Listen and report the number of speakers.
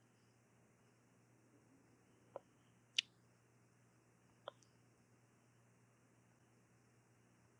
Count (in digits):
0